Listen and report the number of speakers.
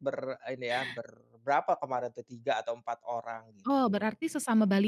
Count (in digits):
2